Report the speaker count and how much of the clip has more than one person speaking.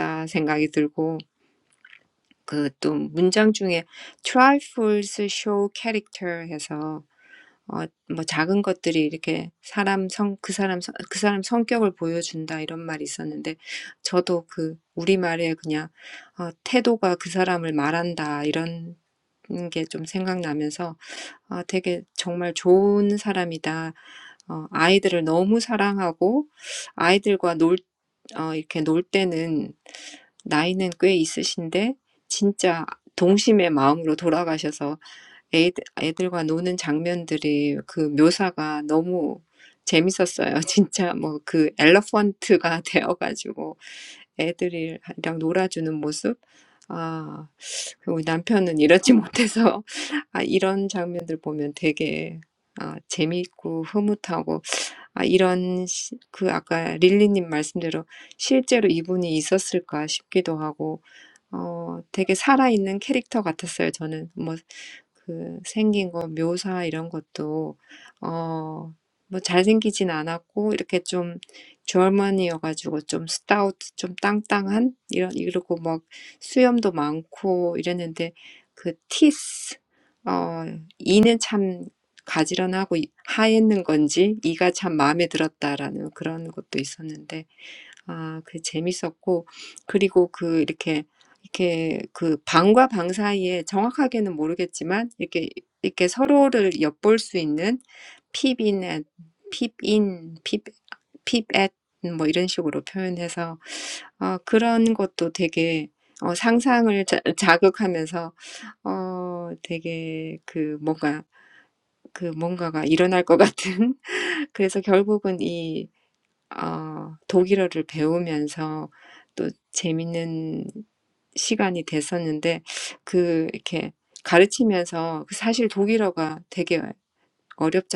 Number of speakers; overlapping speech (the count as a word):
one, no overlap